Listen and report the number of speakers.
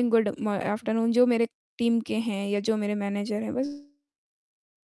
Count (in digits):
1